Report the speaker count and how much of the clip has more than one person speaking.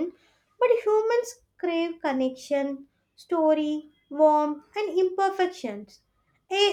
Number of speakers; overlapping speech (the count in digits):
1, no overlap